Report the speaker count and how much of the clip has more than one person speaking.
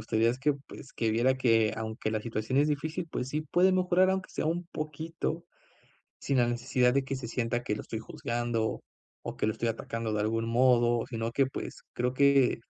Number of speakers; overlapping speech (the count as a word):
one, no overlap